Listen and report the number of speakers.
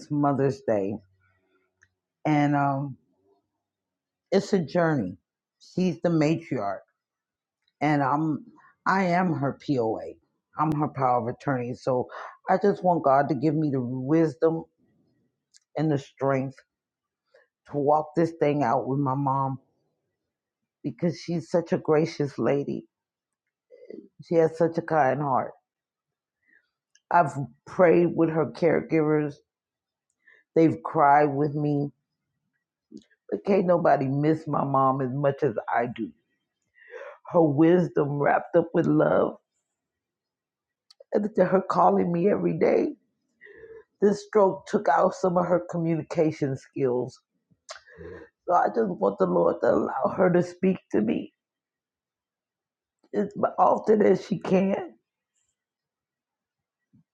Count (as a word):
one